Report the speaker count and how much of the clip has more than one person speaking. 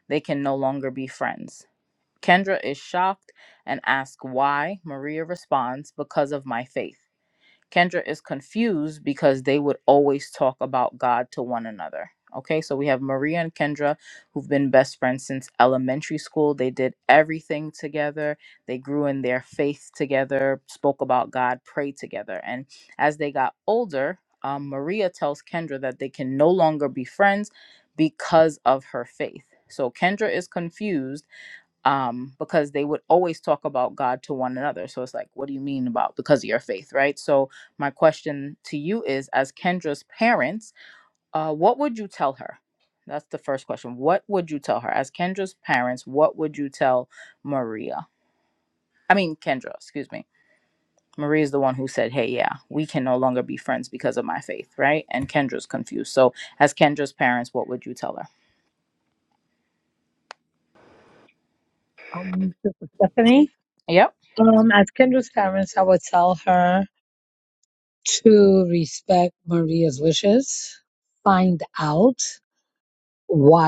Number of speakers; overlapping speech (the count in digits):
2, no overlap